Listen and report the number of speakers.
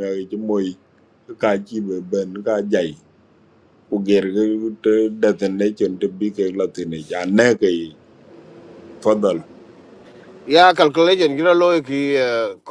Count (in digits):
2